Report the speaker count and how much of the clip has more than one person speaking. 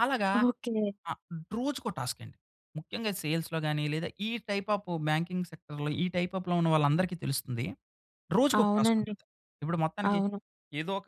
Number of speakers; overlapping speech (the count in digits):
2, about 6%